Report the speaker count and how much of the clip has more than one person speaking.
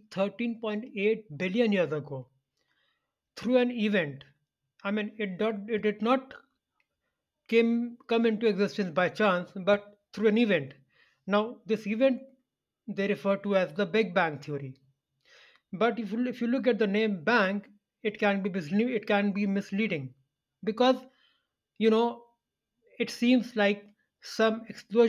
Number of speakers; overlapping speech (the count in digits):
1, no overlap